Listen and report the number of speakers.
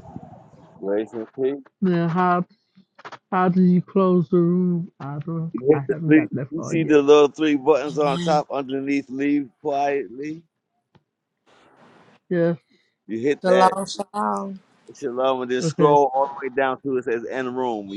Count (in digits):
3